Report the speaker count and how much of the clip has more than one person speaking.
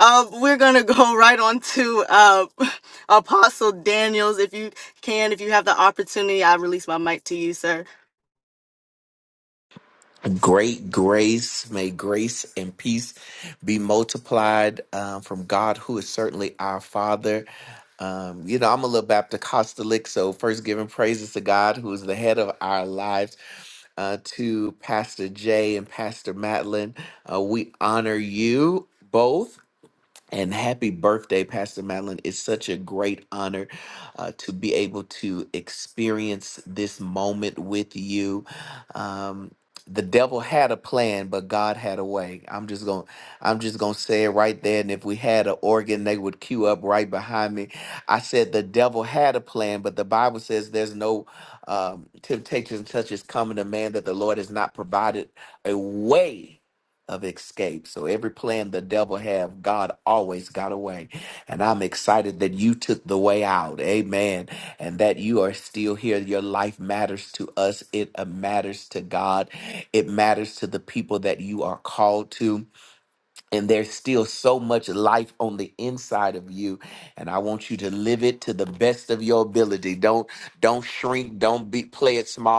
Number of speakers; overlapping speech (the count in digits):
2, no overlap